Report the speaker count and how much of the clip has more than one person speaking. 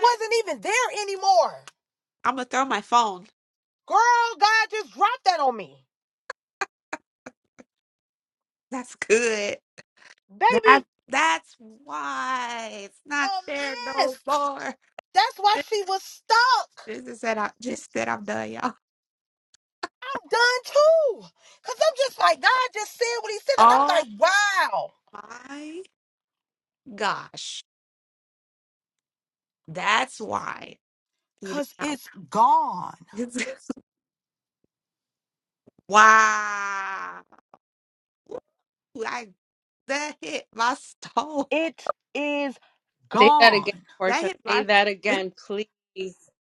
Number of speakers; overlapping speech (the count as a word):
three, about 7%